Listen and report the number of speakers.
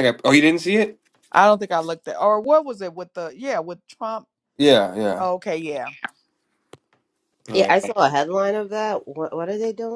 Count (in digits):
3